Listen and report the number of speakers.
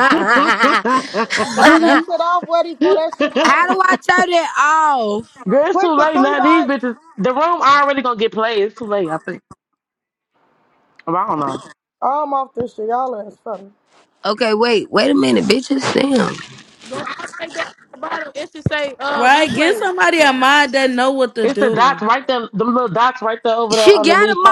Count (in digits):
5